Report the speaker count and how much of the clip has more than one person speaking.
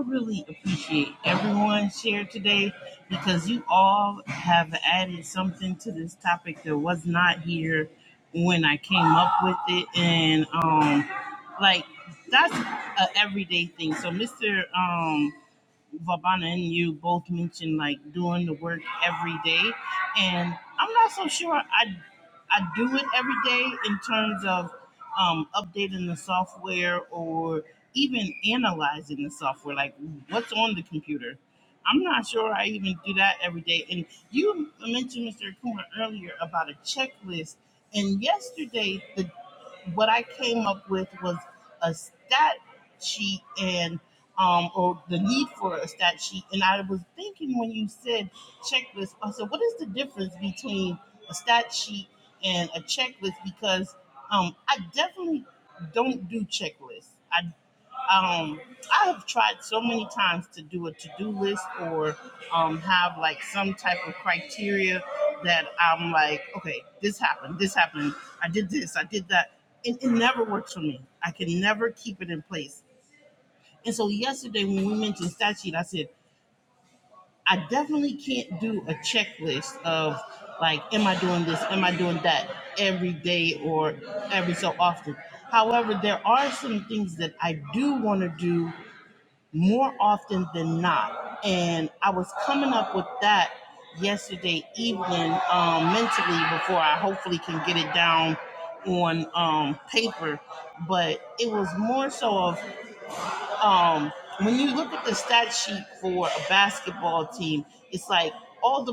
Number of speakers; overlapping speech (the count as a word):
one, no overlap